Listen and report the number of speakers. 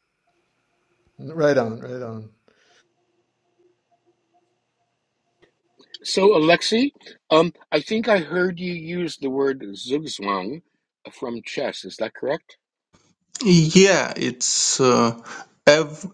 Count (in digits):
3